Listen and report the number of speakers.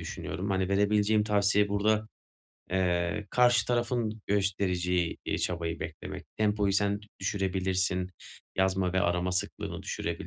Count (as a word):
one